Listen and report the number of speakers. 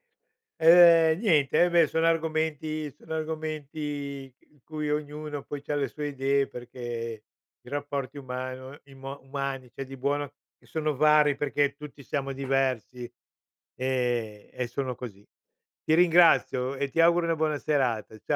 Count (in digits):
1